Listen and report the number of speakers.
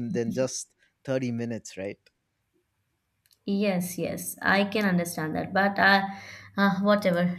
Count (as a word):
two